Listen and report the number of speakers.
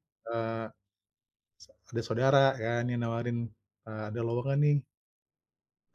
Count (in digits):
1